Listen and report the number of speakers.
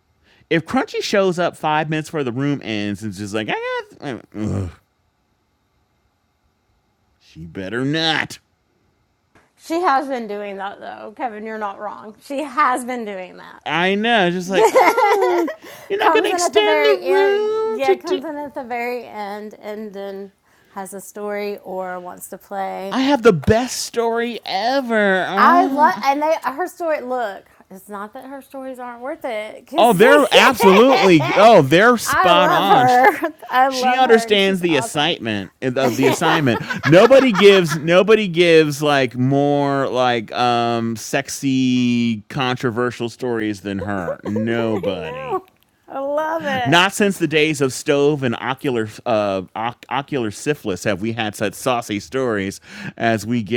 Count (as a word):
two